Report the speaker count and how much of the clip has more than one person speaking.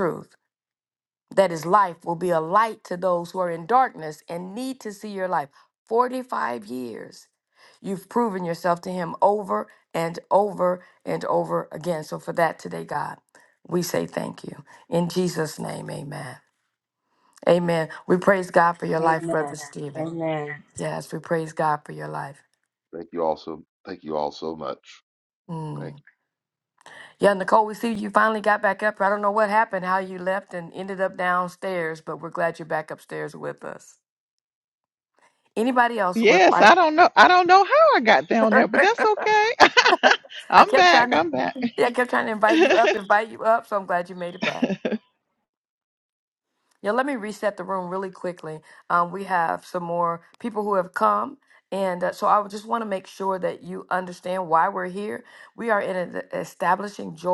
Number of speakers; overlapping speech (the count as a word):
four, about 4%